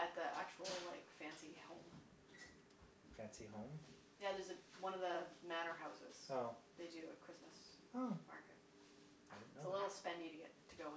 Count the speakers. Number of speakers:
2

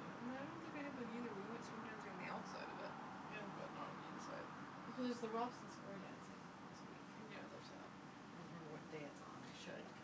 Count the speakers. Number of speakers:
2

